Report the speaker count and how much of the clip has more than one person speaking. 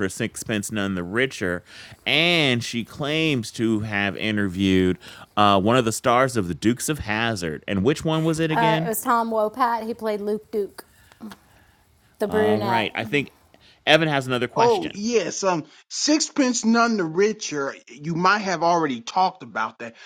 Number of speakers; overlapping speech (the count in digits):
3, about 7%